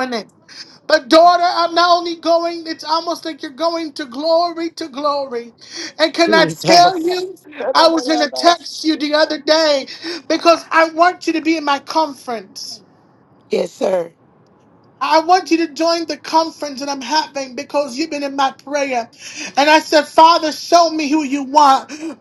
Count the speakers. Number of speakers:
two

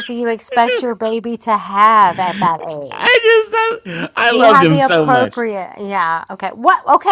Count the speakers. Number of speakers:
two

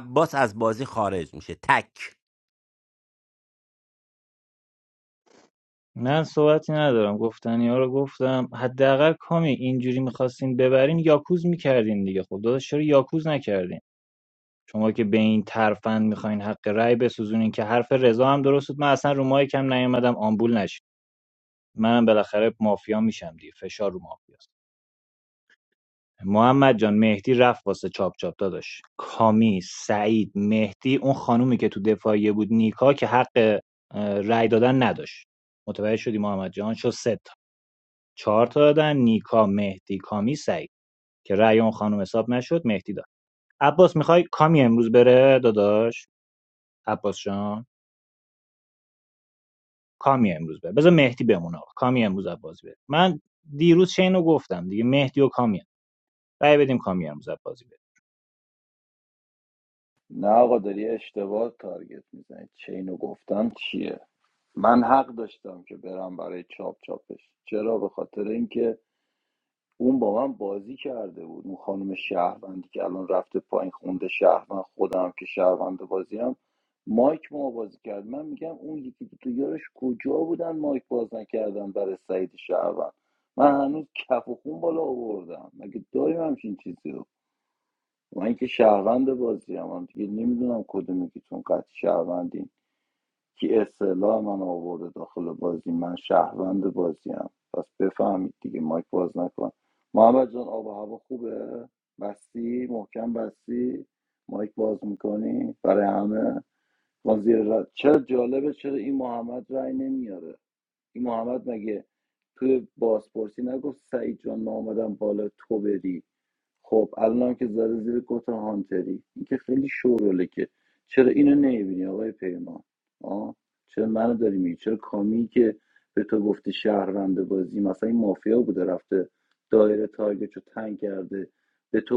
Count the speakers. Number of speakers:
three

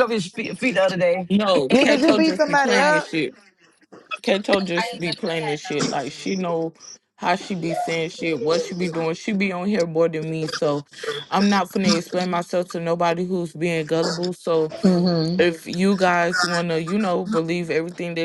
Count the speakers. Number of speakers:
three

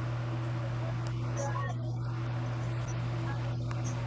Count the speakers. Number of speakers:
zero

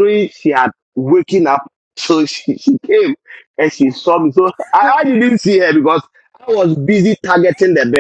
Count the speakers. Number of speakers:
one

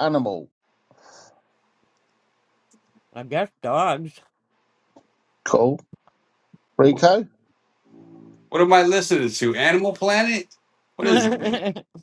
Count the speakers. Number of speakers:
three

